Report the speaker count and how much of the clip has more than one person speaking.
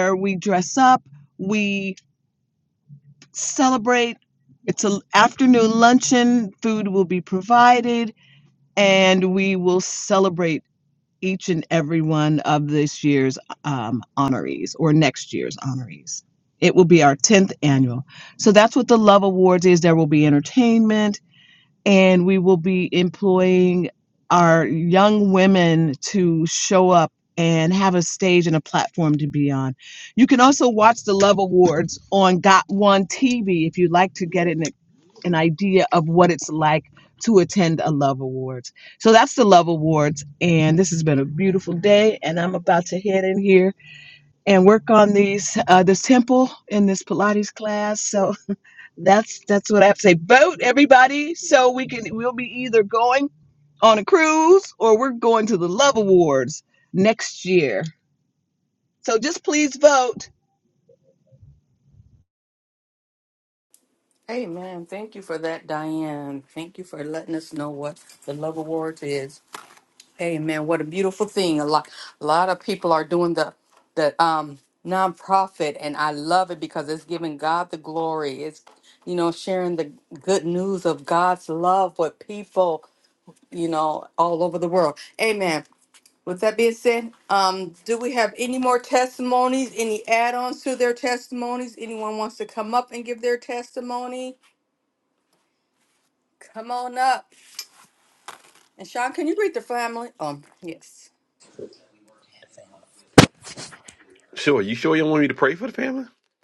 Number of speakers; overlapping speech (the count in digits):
3, no overlap